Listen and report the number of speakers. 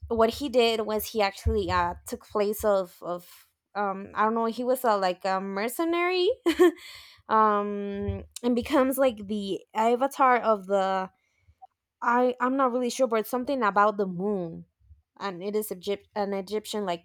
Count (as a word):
one